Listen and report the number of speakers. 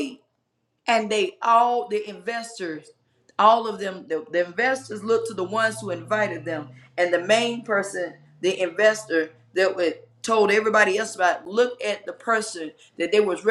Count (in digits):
1